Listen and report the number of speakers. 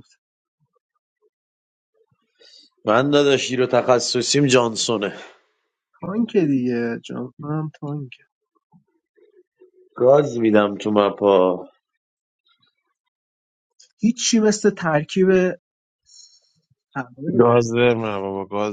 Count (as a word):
three